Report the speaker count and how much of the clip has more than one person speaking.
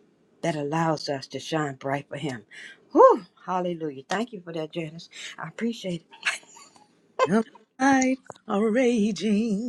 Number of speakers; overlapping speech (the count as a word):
two, no overlap